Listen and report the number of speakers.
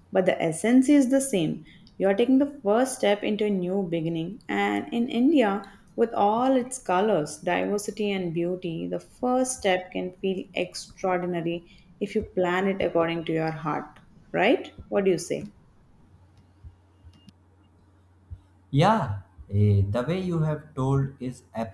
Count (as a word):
two